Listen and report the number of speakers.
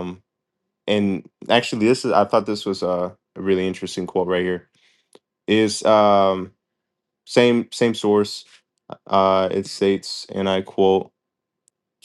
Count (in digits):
1